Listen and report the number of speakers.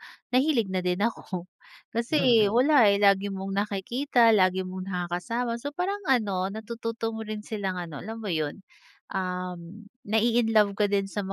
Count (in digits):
1